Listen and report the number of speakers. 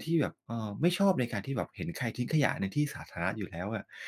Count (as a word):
one